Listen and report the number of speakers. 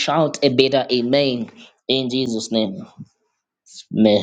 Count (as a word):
one